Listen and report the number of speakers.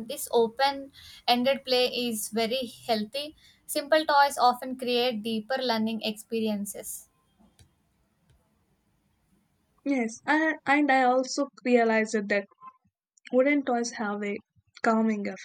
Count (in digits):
2